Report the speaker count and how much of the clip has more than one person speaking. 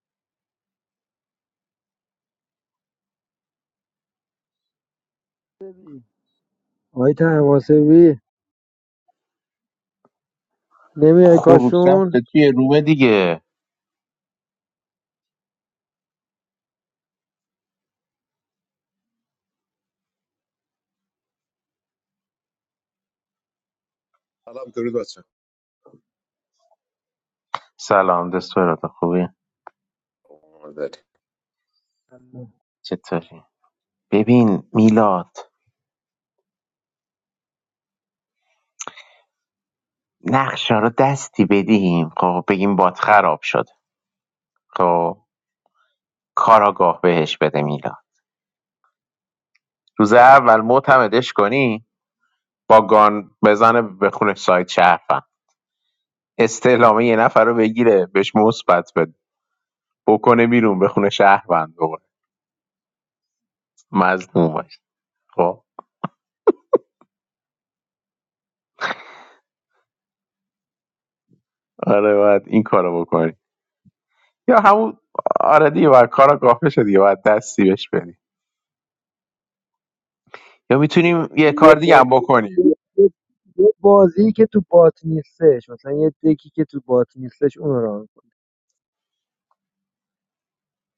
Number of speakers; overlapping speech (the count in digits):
3, about 3%